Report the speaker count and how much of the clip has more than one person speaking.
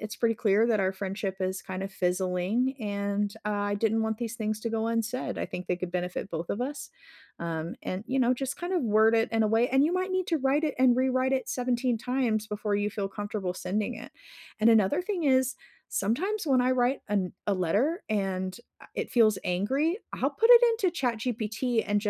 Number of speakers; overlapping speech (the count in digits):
1, no overlap